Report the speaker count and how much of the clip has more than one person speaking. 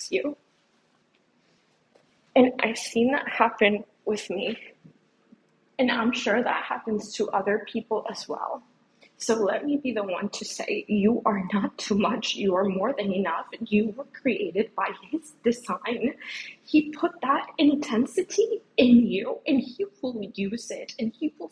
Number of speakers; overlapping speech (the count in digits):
1, no overlap